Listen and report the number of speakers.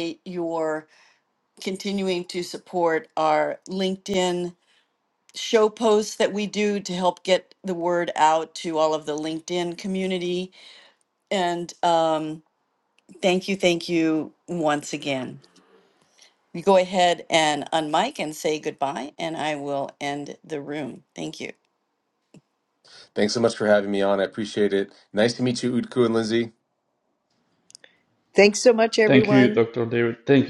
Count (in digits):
4